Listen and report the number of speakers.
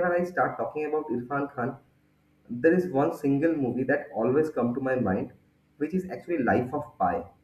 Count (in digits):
1